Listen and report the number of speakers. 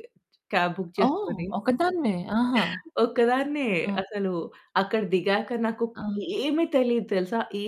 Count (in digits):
2